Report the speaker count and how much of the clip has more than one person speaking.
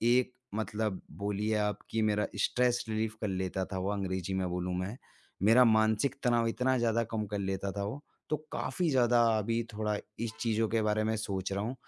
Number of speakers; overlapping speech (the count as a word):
one, no overlap